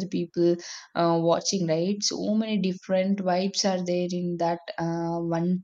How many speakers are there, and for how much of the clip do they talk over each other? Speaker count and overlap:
one, no overlap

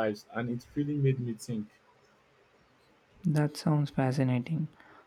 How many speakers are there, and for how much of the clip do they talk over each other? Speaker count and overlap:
two, no overlap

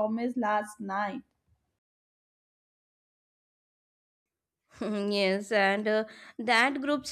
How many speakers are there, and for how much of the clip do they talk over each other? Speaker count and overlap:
two, no overlap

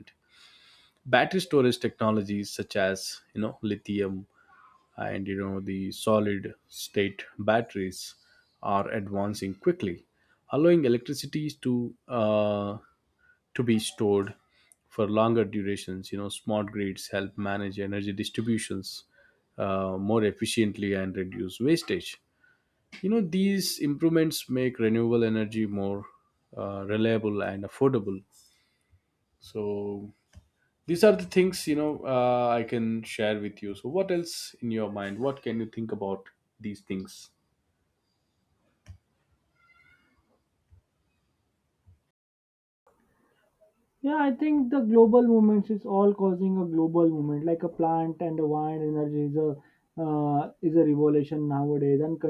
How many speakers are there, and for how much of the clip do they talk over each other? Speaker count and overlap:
two, no overlap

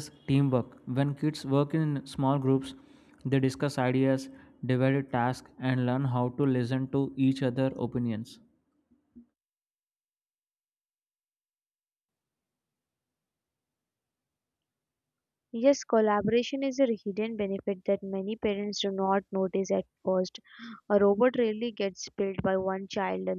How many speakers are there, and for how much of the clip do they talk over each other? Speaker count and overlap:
two, no overlap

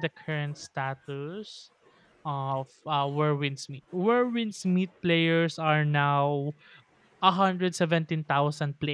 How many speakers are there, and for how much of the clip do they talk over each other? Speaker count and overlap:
one, no overlap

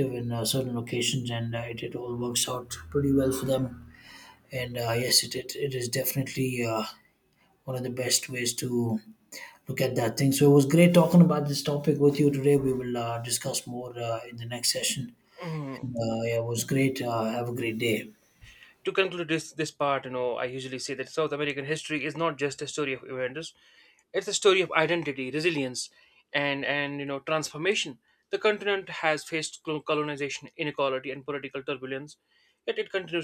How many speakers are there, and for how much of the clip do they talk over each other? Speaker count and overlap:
two, under 1%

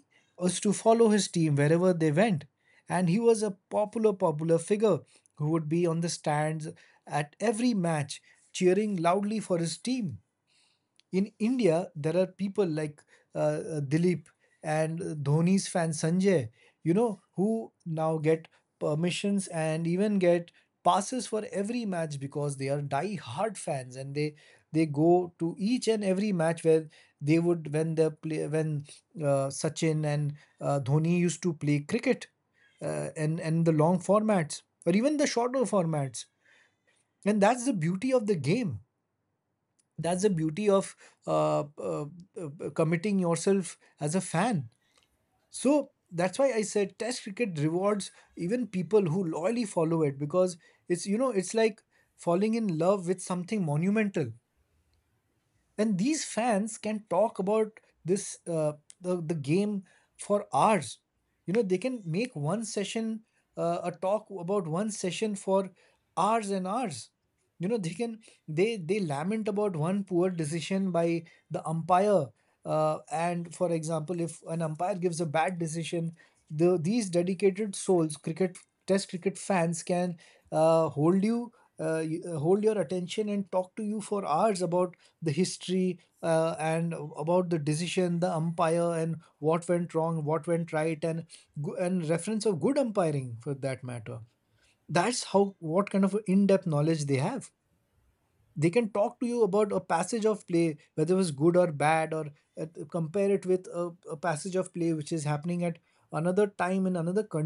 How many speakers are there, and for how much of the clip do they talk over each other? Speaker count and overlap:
one, no overlap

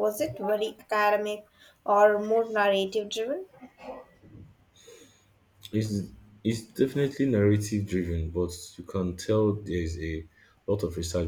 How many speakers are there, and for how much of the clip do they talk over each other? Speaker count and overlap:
two, no overlap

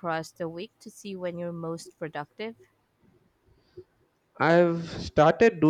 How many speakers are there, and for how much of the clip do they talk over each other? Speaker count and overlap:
two, no overlap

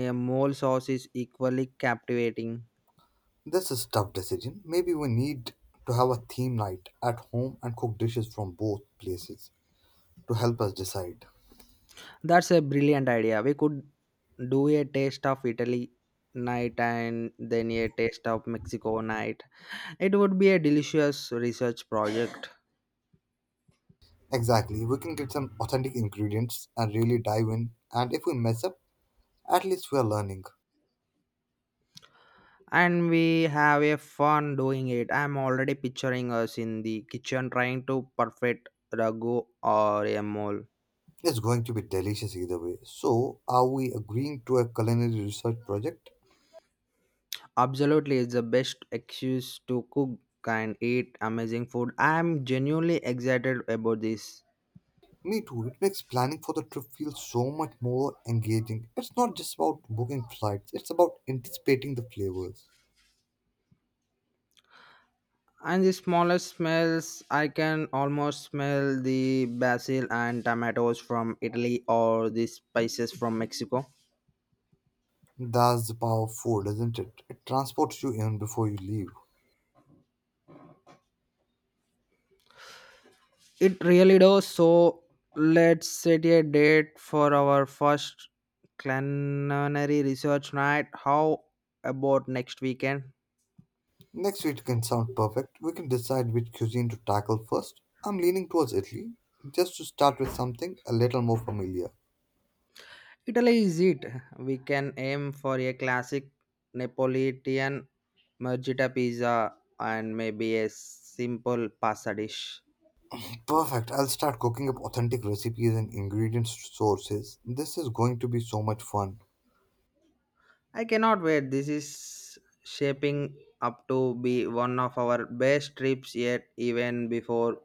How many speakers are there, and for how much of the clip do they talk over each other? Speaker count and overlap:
two, no overlap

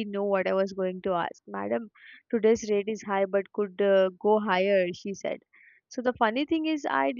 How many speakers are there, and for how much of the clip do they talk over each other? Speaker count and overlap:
one, no overlap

